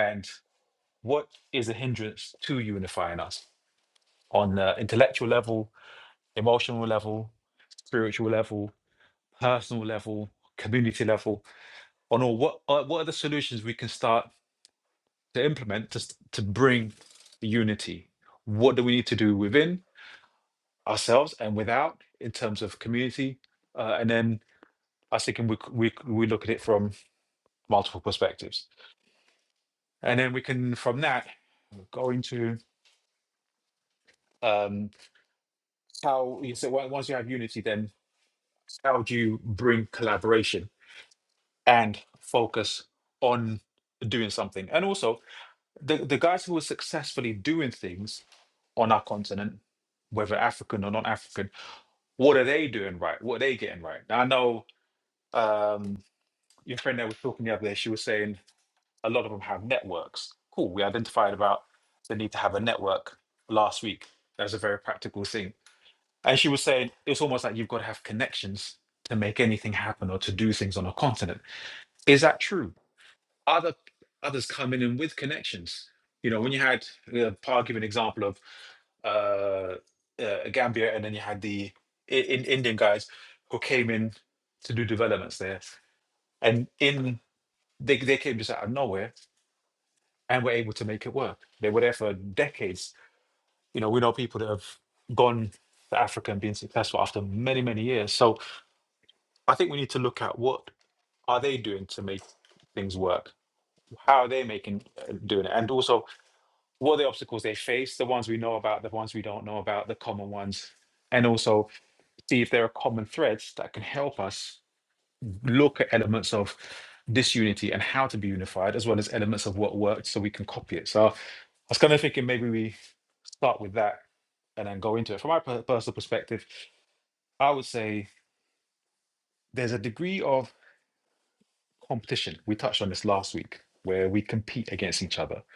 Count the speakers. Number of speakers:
one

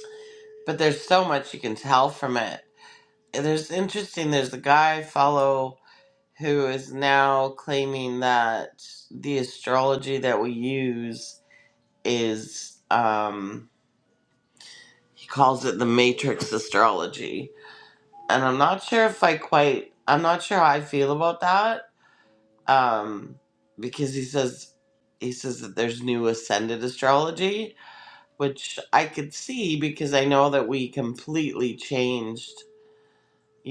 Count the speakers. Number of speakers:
one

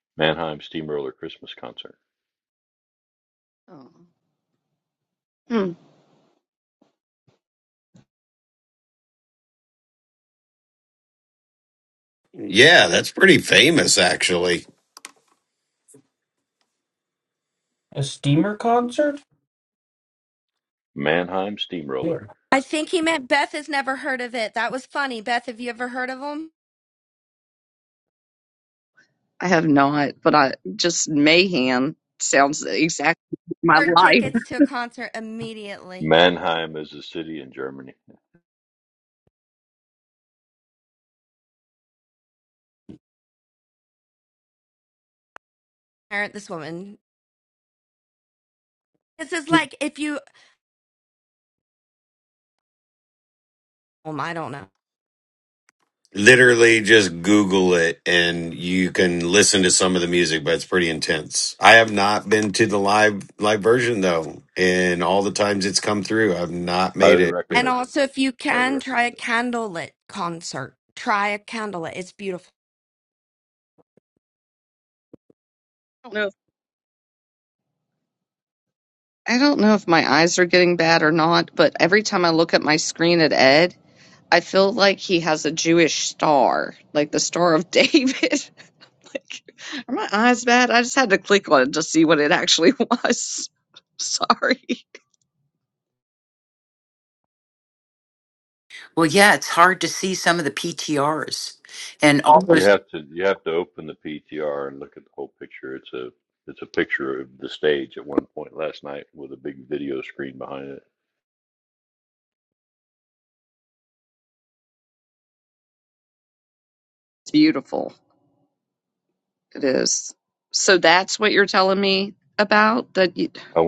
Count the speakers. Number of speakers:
six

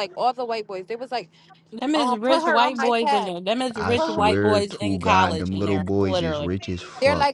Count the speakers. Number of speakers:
three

